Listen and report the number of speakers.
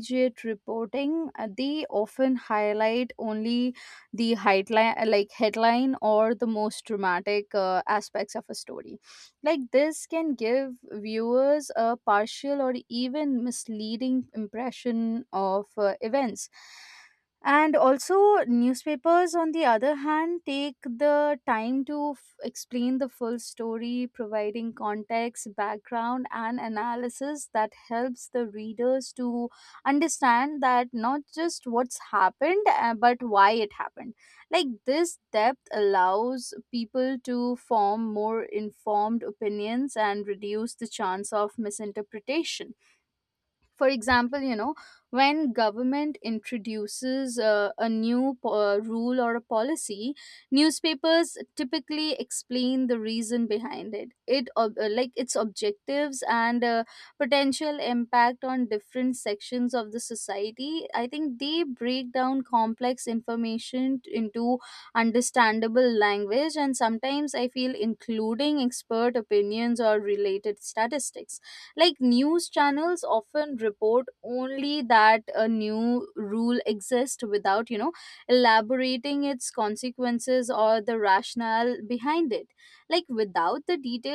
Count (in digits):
1